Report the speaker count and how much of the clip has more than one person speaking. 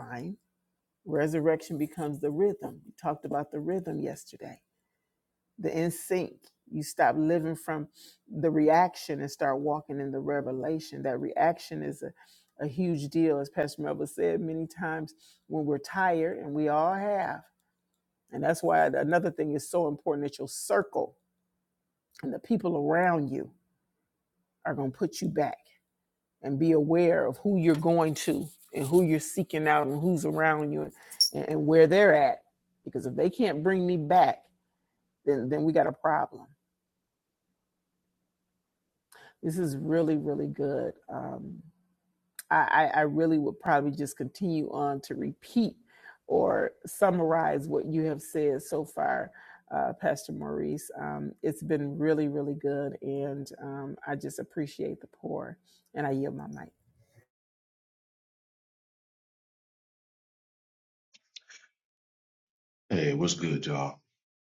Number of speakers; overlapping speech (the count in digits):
2, no overlap